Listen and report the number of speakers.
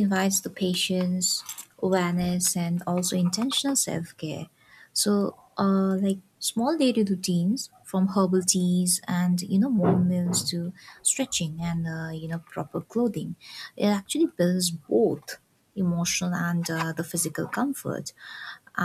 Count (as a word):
one